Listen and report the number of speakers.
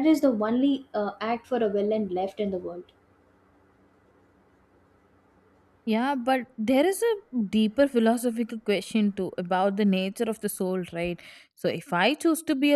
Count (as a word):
two